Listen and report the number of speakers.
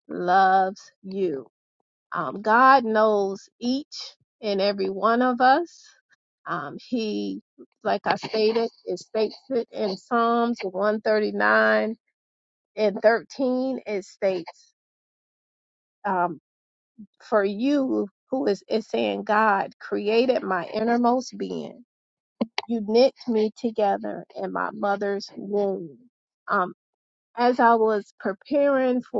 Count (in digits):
1